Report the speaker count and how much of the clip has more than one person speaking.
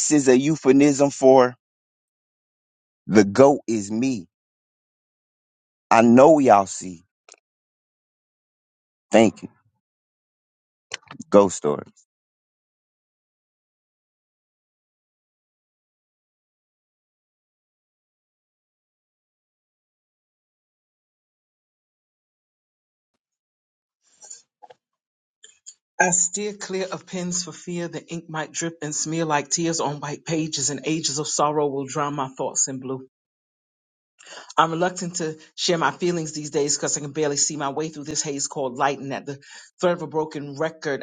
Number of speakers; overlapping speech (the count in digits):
2, no overlap